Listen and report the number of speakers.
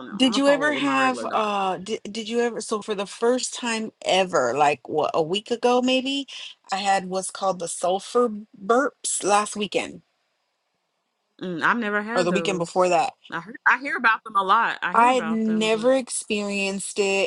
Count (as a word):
two